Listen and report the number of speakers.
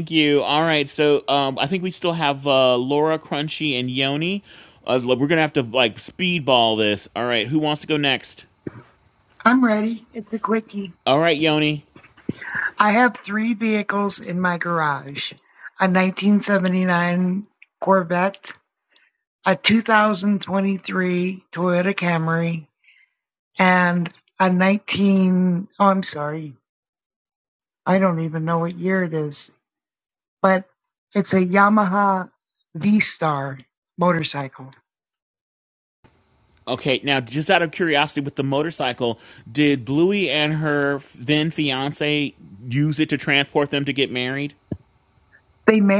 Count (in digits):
2